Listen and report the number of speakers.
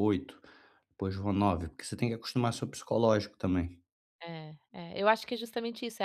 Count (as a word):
two